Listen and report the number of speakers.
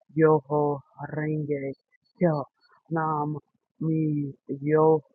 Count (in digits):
1